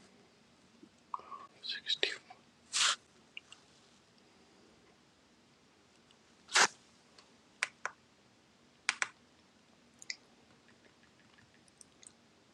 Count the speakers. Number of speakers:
0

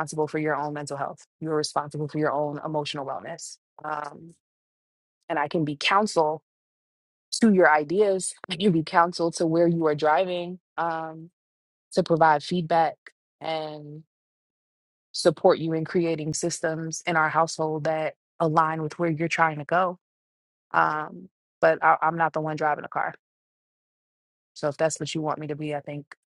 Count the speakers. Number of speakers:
1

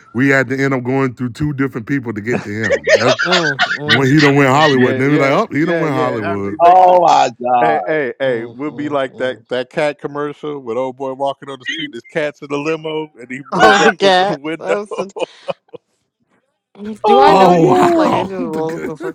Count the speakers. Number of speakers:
4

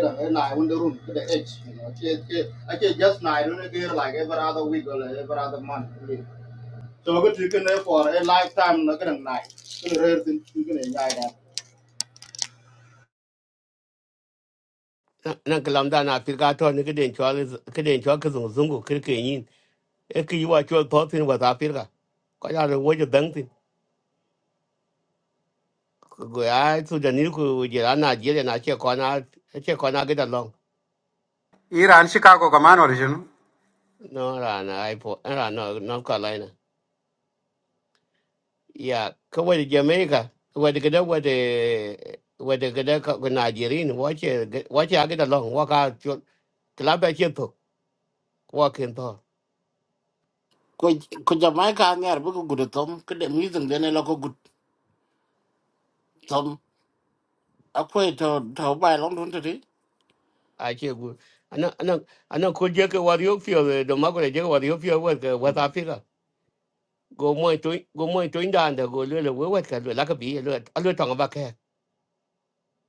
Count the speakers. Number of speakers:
4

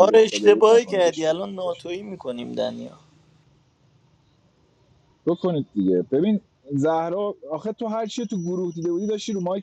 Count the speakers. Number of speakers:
2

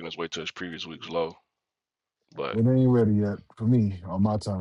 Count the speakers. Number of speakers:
2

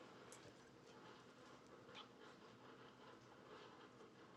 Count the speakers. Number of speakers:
0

